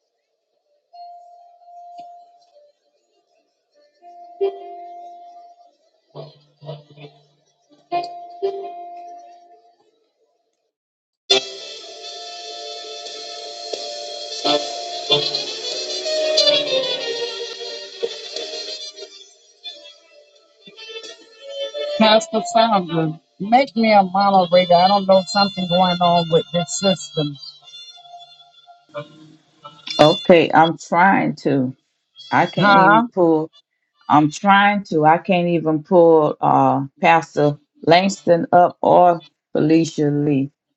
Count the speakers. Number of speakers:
2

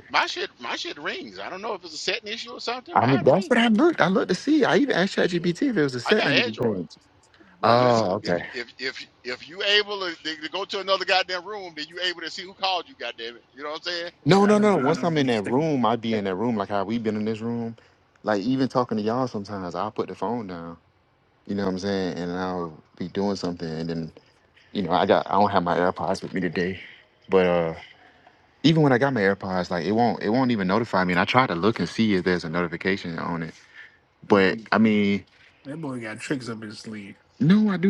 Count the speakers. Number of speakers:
3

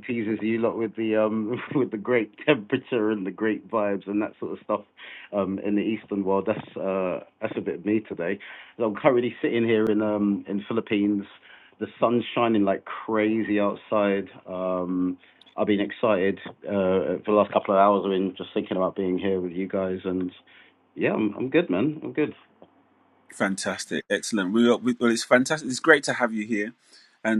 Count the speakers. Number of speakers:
2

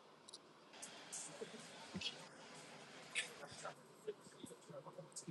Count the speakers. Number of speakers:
0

